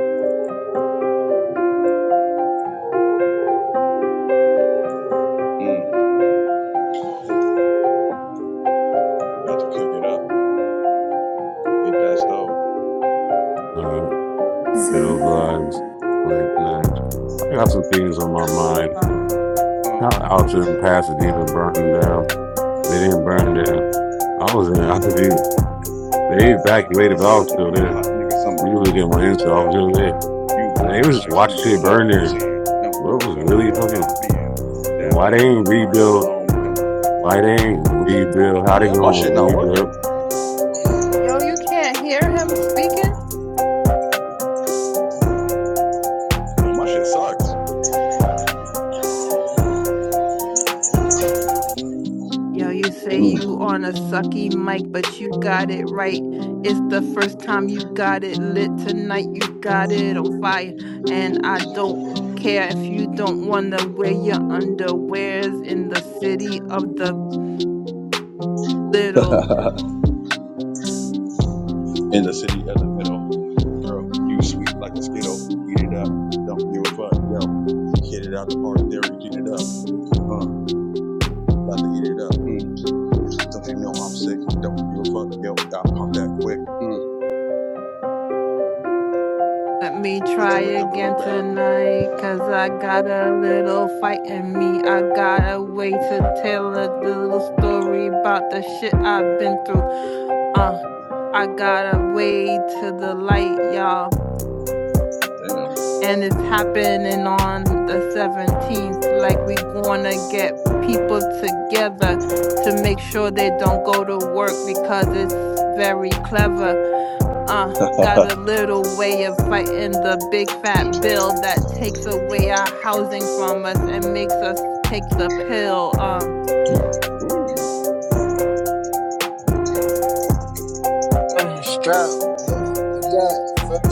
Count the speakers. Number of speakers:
four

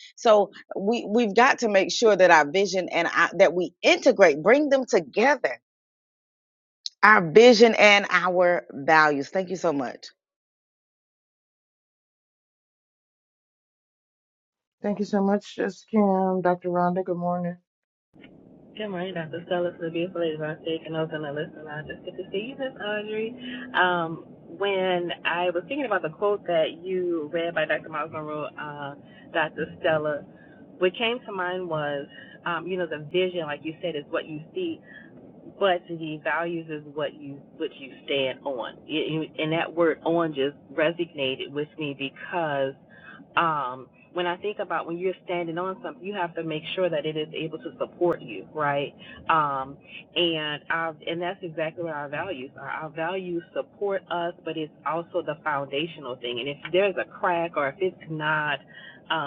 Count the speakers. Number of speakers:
three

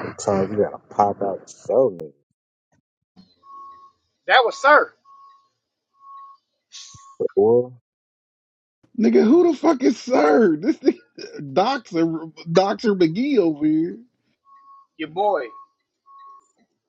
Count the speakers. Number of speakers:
three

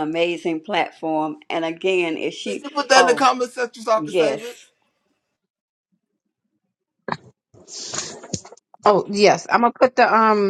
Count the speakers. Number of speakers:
three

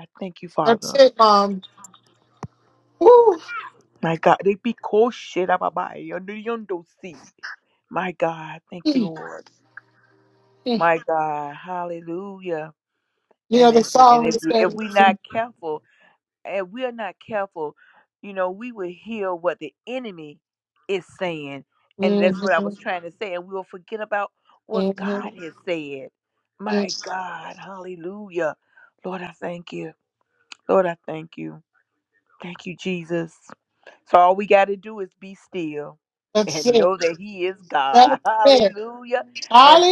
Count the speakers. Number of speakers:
two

